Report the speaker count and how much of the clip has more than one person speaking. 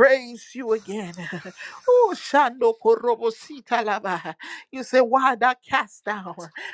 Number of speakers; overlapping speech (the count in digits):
1, no overlap